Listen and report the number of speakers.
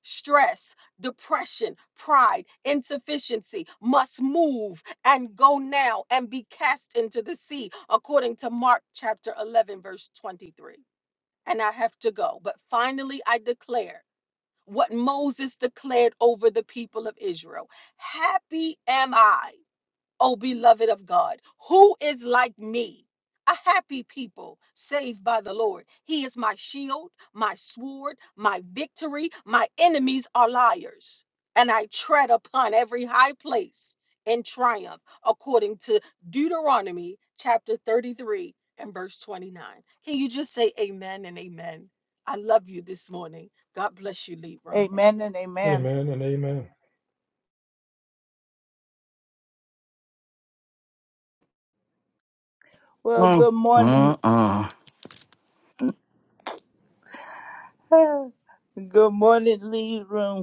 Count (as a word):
four